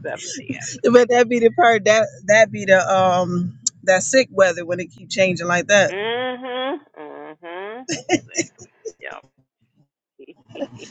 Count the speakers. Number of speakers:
two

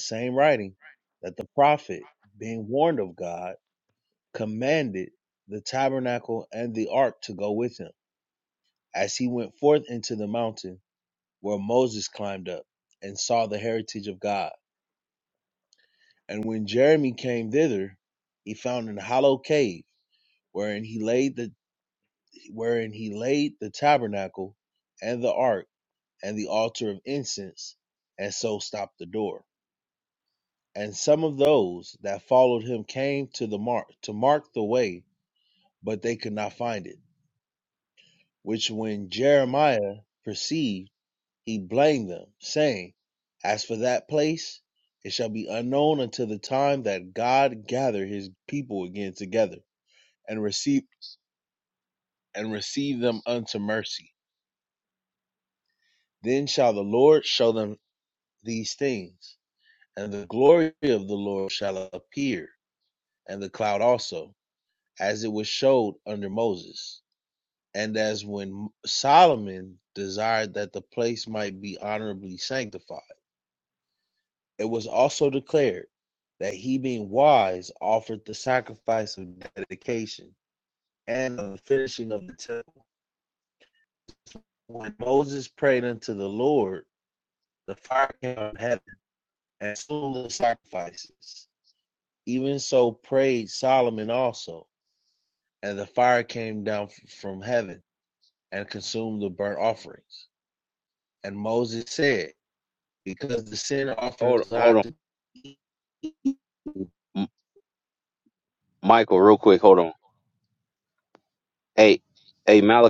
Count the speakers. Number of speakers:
two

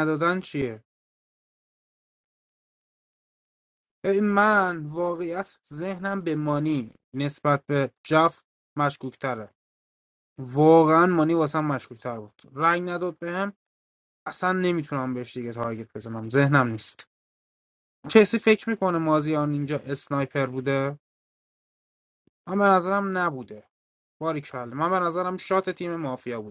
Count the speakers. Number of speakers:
one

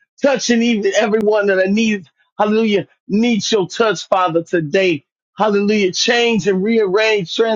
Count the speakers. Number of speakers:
one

